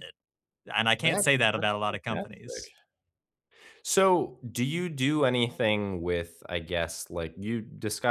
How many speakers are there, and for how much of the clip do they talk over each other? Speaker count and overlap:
2, about 13%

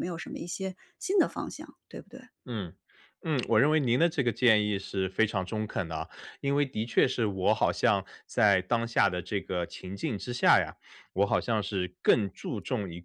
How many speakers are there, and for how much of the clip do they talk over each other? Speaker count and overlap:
2, no overlap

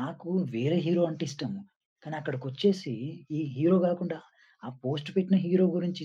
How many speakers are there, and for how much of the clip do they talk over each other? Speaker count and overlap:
1, no overlap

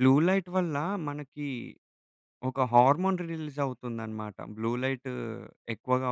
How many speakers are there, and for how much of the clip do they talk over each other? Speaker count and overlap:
1, no overlap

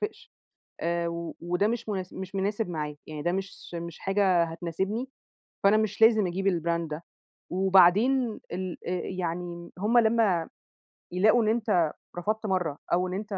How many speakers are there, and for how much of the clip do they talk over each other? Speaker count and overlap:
1, no overlap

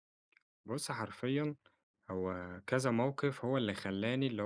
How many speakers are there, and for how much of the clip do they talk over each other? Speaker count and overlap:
1, no overlap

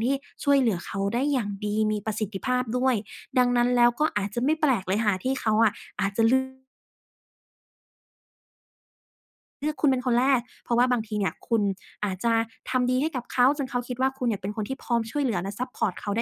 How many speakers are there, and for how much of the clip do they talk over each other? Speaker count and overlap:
1, no overlap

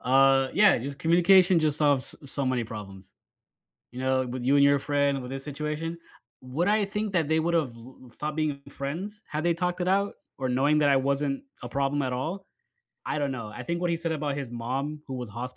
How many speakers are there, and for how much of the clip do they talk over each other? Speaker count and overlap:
1, no overlap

